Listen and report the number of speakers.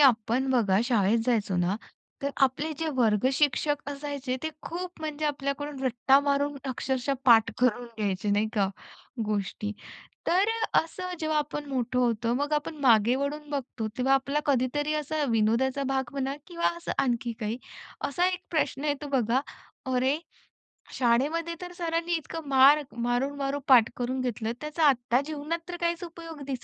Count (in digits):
1